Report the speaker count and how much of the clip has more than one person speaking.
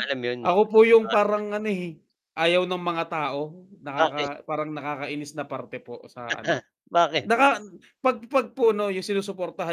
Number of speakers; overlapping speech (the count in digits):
2, about 8%